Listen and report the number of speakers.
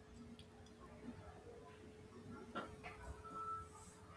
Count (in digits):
0